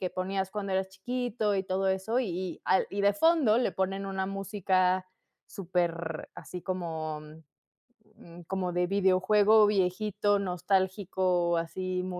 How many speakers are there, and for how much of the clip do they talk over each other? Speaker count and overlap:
1, no overlap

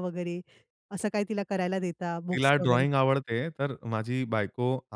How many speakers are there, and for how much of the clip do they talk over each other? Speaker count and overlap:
2, about 11%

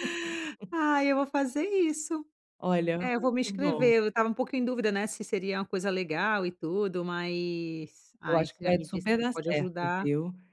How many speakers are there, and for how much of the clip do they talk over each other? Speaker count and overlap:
2, about 26%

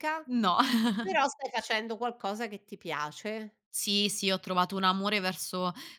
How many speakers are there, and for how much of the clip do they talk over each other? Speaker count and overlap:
2, no overlap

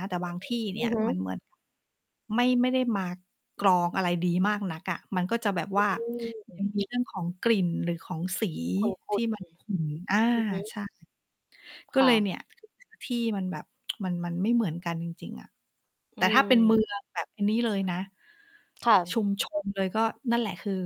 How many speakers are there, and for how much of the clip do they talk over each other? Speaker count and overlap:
2, about 6%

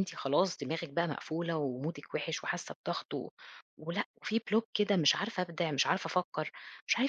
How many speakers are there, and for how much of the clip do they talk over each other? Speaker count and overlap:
1, no overlap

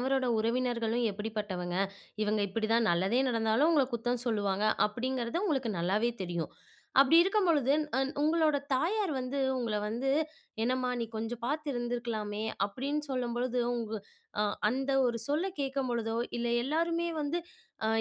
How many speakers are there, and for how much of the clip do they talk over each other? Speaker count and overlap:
1, no overlap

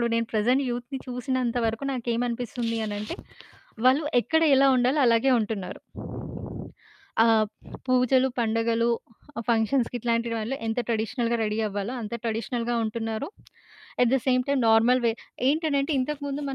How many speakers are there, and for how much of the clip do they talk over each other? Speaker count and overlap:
1, no overlap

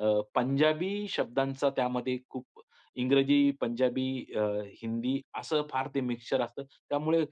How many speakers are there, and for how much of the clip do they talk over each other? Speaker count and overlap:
1, no overlap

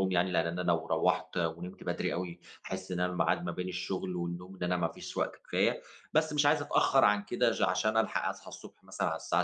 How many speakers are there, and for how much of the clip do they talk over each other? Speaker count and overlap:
1, no overlap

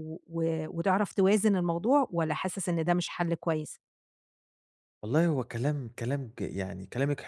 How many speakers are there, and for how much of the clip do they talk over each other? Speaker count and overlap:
2, no overlap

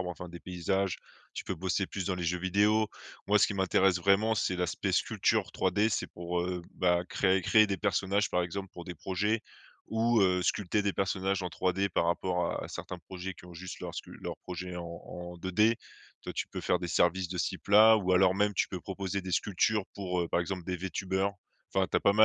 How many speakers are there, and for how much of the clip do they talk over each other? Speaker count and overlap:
1, no overlap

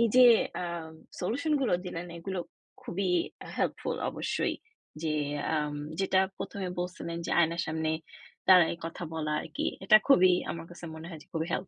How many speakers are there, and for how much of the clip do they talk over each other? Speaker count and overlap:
1, no overlap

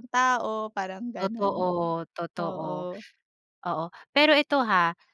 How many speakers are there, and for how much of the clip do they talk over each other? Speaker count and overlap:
2, about 20%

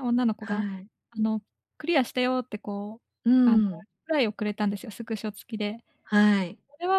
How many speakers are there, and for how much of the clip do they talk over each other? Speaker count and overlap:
2, about 5%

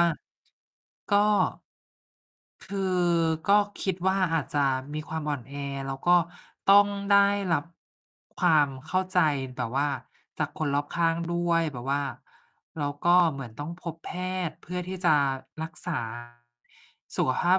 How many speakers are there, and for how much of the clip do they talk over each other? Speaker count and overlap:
1, no overlap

